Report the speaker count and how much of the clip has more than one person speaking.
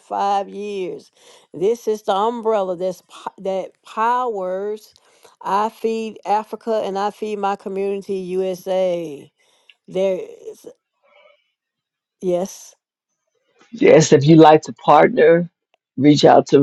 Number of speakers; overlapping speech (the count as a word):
two, no overlap